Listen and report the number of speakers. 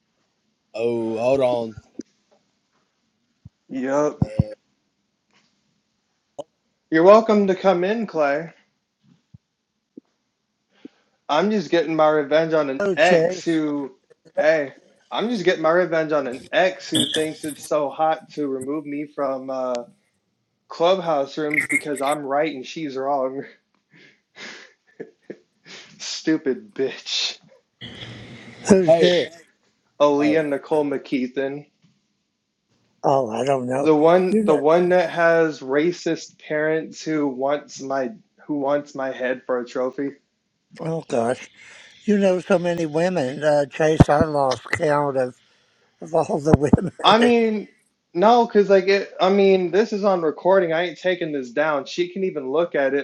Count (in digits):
3